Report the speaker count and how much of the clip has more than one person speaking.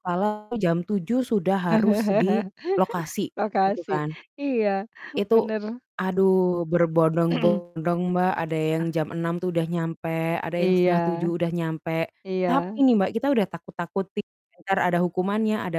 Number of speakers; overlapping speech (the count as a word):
two, about 10%